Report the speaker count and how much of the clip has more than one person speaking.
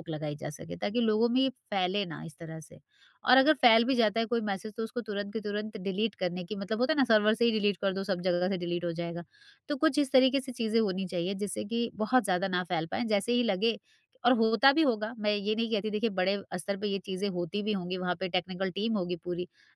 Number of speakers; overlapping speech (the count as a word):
one, no overlap